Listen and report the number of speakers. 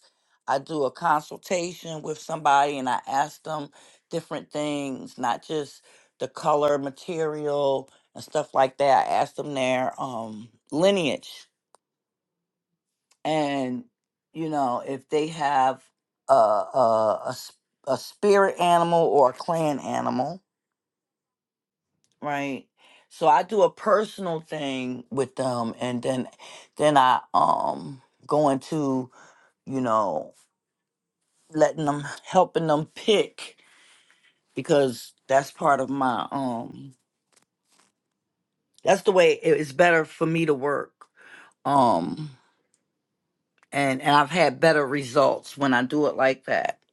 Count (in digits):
1